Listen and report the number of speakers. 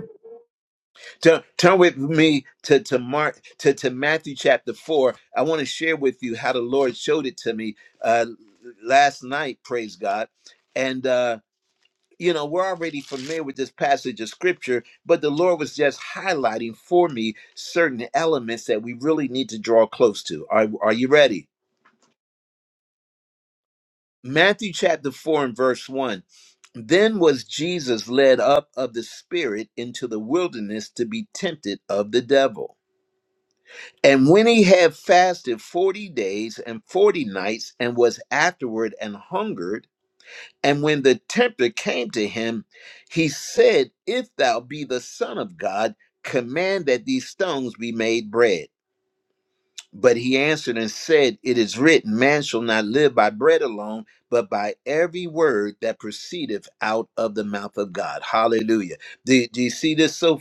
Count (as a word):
one